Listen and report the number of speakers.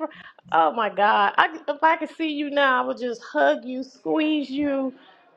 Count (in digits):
1